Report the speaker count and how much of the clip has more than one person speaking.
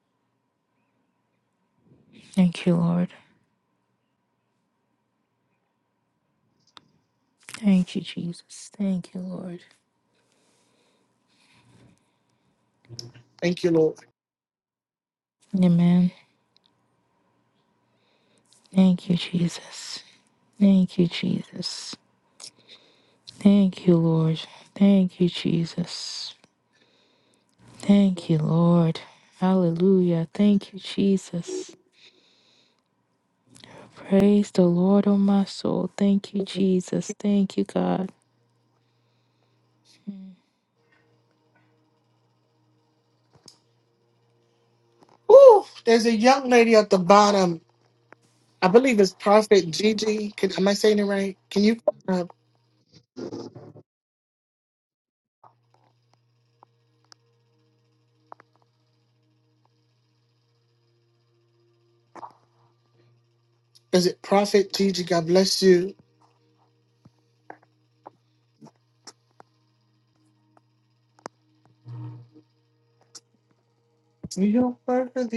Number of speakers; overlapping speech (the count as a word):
two, no overlap